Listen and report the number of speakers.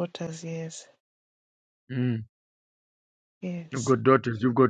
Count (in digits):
2